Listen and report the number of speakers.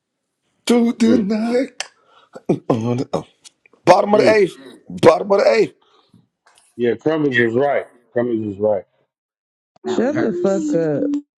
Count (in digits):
3